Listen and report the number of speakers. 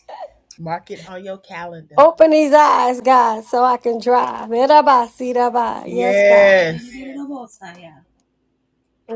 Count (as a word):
three